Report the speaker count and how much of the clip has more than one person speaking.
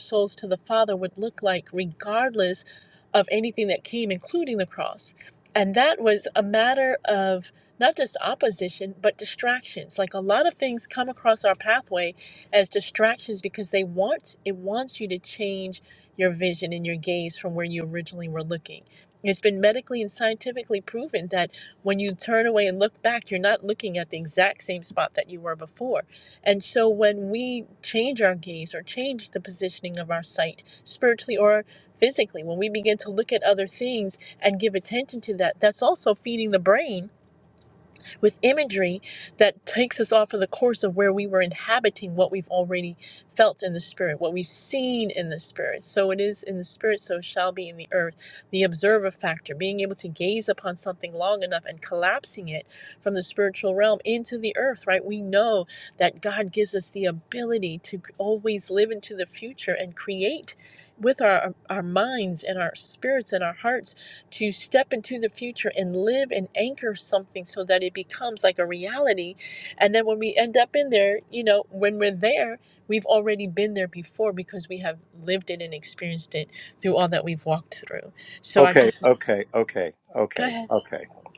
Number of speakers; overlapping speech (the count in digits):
2, about 1%